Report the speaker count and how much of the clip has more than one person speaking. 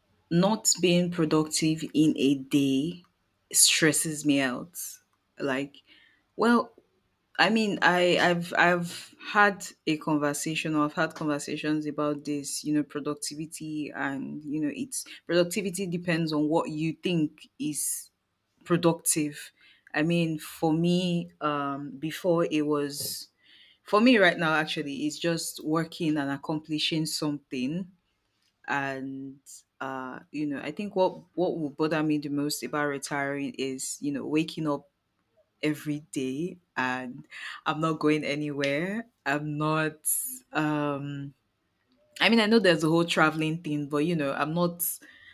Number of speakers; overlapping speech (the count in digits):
1, no overlap